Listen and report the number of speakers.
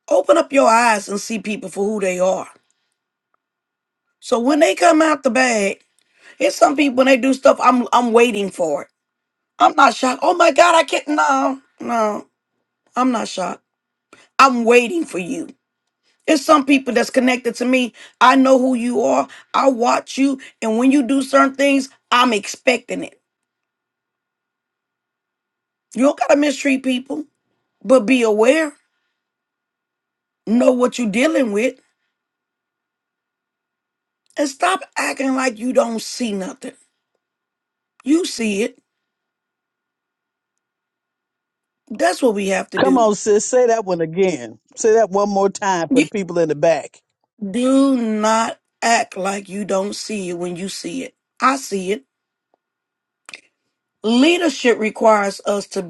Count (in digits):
2